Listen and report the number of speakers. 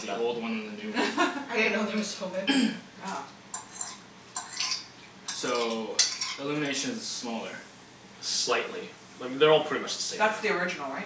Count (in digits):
4